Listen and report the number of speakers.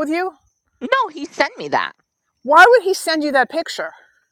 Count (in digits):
2